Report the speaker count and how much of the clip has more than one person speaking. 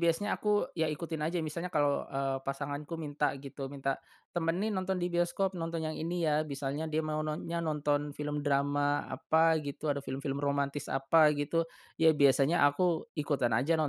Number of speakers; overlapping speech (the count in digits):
1, no overlap